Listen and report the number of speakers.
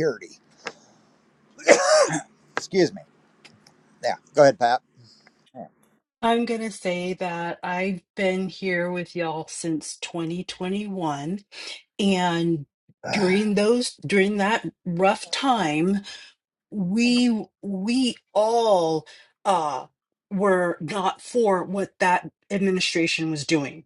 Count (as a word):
two